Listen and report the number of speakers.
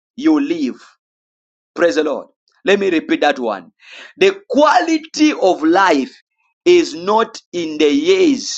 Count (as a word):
one